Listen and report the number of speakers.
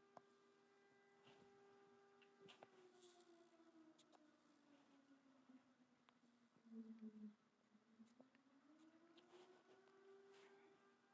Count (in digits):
0